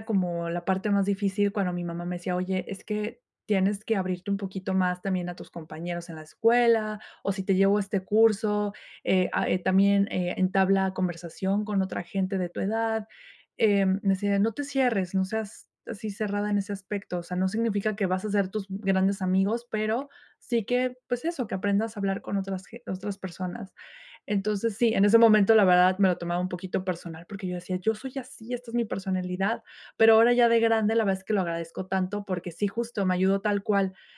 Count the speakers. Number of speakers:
1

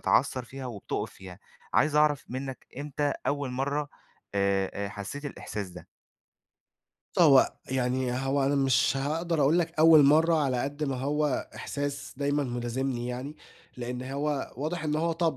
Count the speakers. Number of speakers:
2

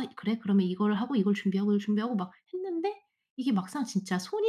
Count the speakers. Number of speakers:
1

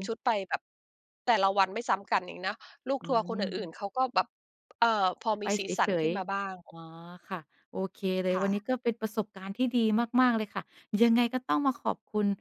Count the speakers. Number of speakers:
2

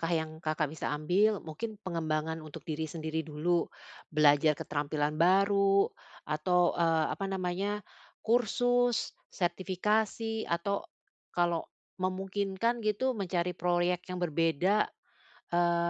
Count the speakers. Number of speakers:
1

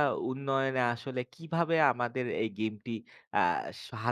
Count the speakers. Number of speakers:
1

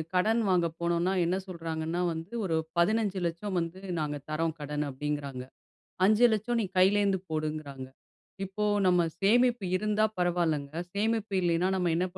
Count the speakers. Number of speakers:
1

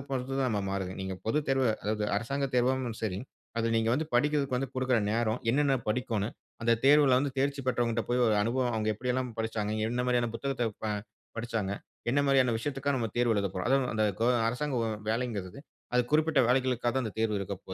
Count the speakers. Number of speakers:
1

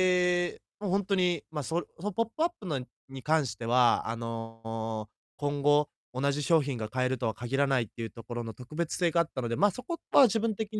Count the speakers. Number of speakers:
1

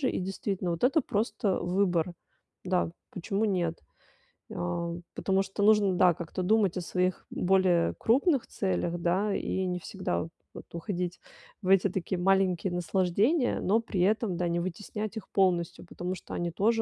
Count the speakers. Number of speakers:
1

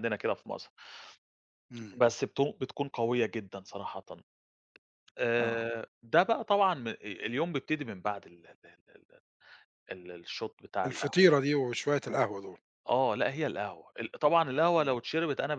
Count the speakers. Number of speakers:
2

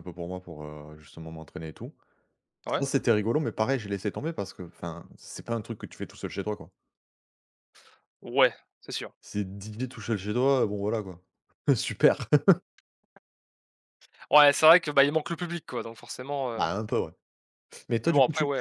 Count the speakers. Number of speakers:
2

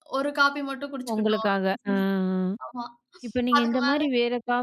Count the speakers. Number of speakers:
2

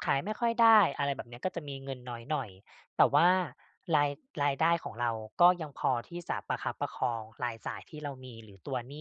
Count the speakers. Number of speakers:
1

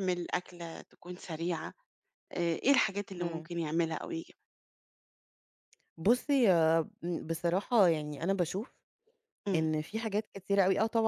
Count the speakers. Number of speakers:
2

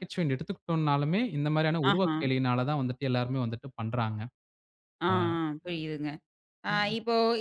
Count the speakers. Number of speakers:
2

